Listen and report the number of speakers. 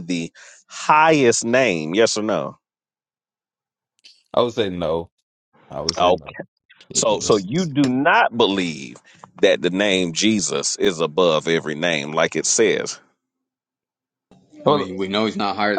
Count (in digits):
3